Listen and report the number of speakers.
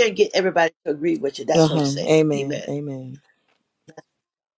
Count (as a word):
two